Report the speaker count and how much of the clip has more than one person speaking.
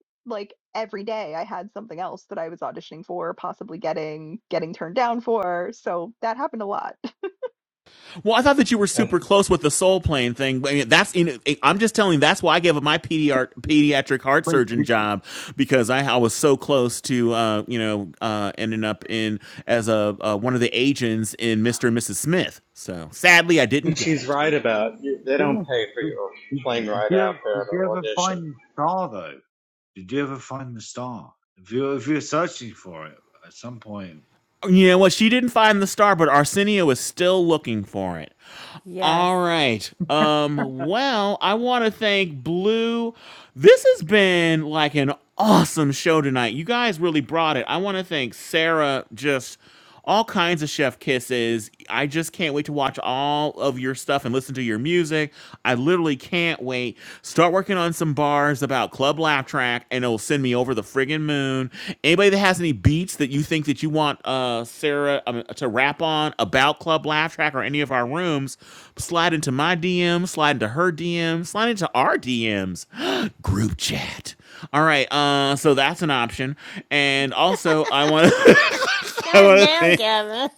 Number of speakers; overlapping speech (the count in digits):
5, about 4%